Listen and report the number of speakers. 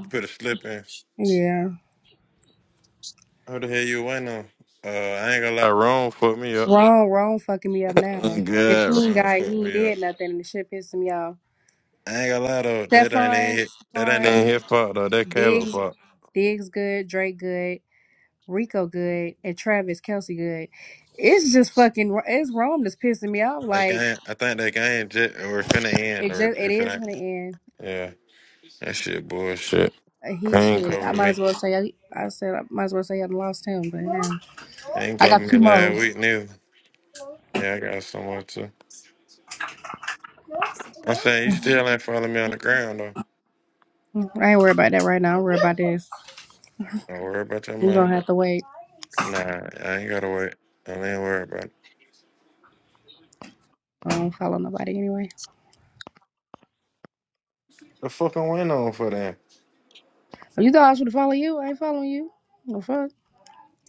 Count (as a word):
two